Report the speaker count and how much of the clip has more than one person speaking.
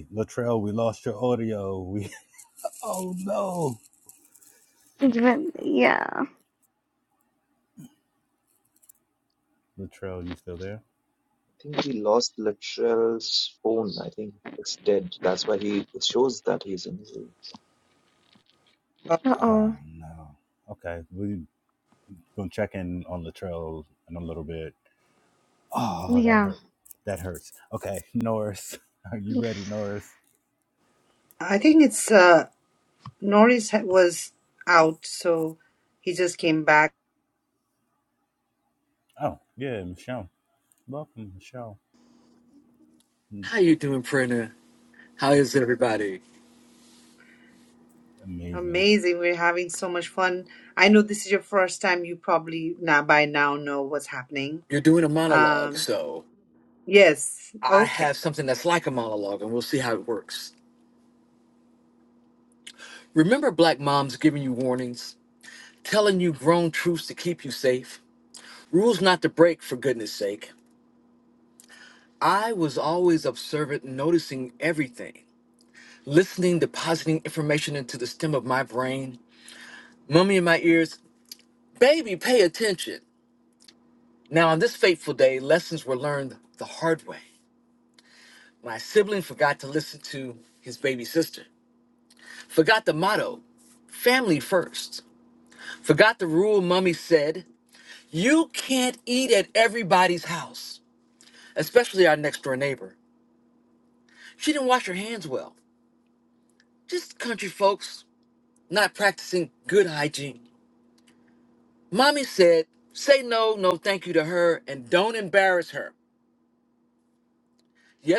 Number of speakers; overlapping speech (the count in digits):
5, about 2%